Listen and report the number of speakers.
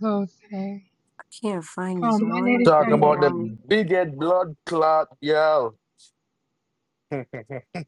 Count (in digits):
3